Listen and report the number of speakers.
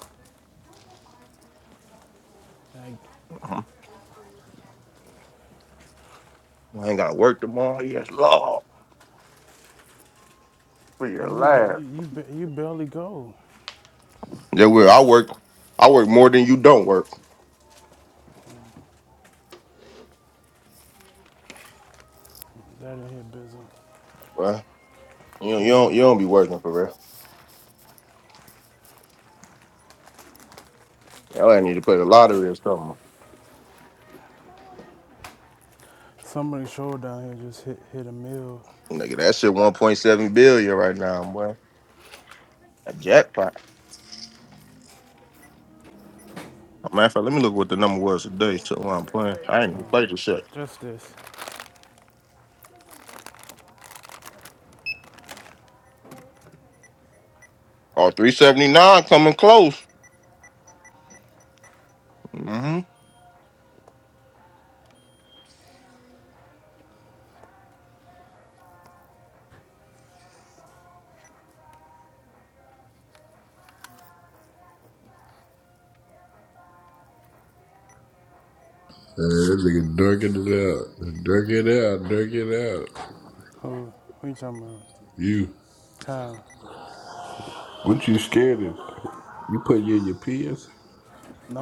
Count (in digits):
3